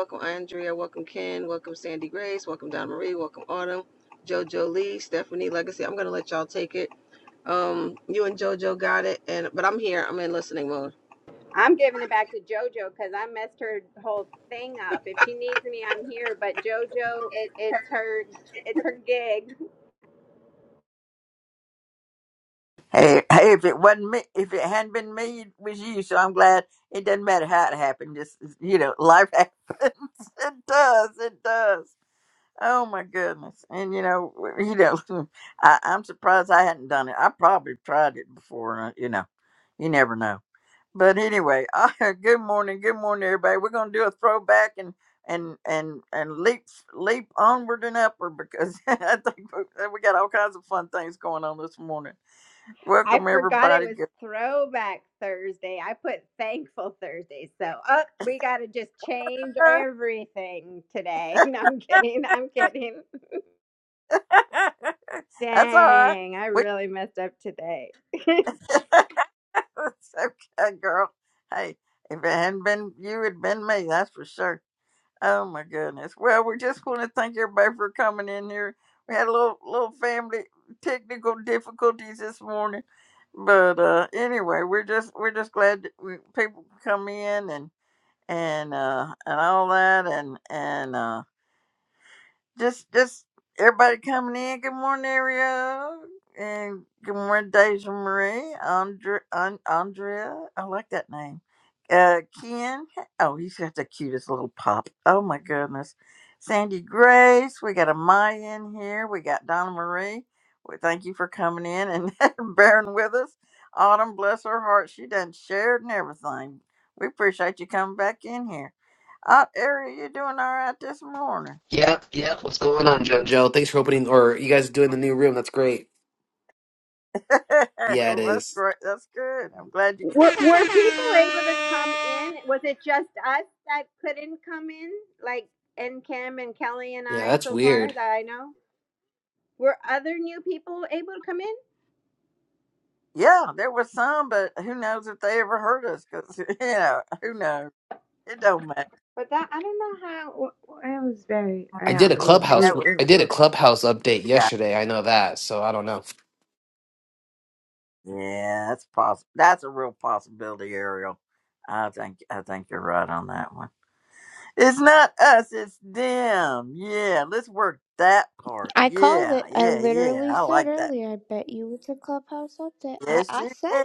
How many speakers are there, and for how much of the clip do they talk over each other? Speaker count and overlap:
five, about 4%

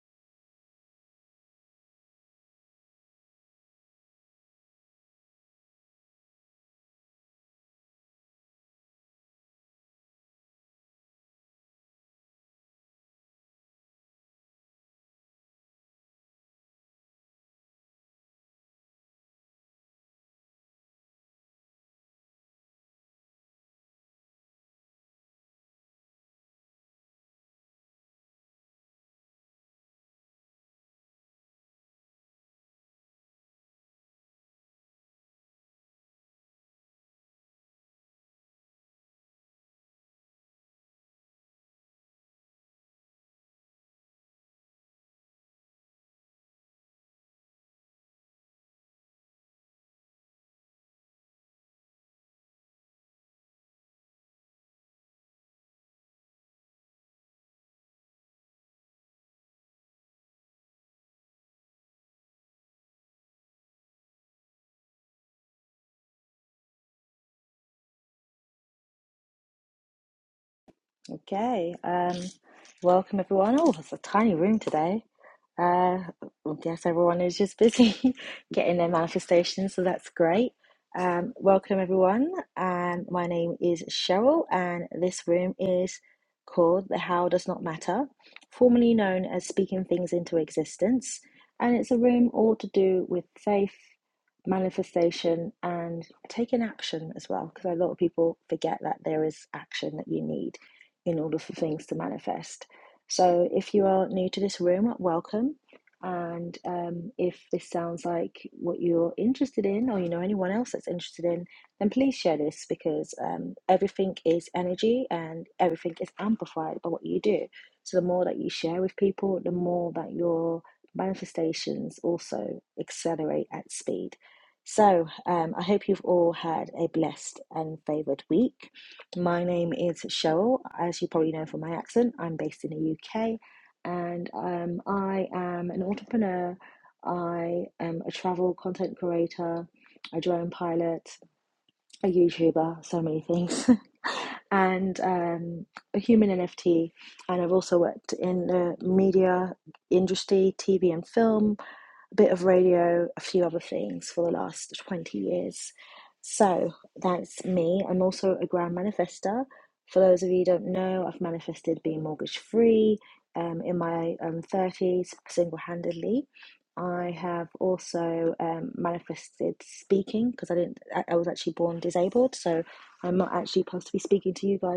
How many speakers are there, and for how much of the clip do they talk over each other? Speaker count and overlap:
one, no overlap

